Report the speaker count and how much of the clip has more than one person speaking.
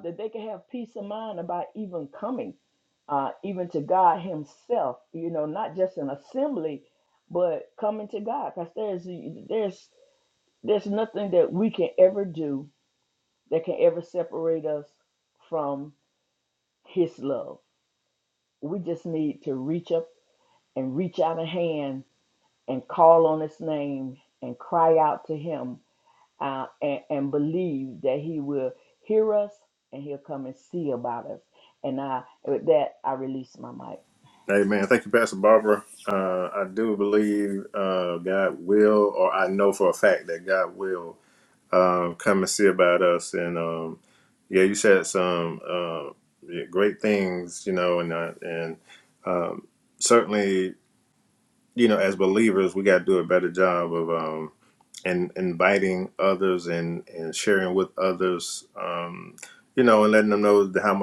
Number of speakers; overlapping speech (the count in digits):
2, no overlap